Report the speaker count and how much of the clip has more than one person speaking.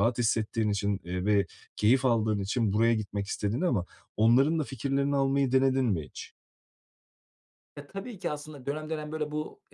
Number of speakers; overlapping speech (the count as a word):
two, no overlap